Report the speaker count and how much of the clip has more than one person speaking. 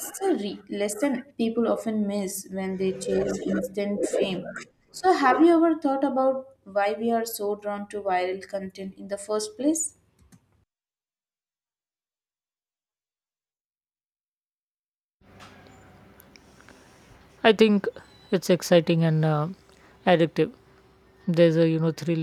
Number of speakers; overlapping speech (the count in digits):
2, no overlap